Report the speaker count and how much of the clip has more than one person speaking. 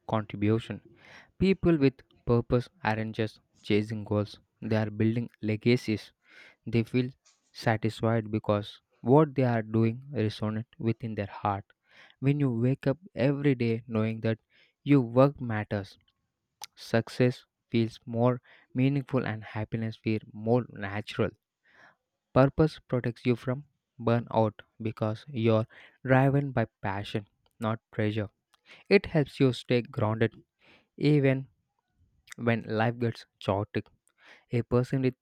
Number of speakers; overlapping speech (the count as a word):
one, no overlap